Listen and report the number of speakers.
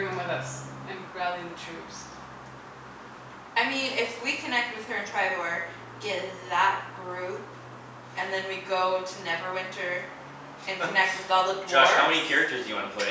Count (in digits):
3